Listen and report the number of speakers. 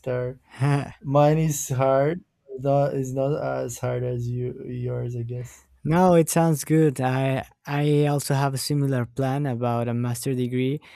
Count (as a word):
two